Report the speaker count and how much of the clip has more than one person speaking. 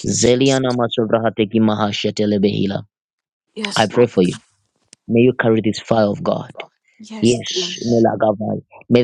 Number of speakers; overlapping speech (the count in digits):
2, about 15%